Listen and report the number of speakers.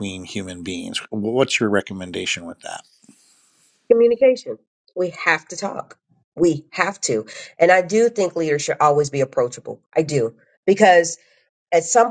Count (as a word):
two